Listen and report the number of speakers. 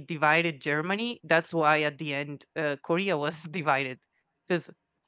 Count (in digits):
1